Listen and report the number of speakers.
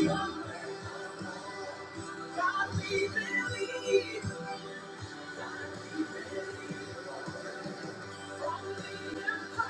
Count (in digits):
0